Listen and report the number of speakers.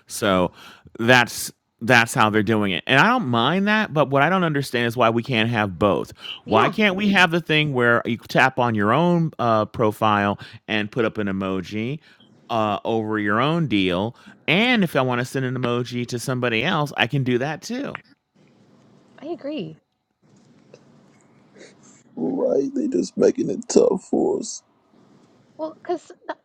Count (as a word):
three